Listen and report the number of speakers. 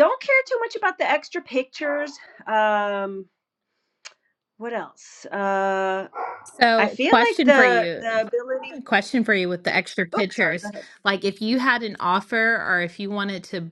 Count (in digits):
2